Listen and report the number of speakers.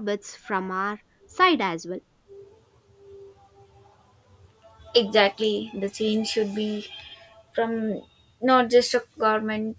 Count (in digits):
2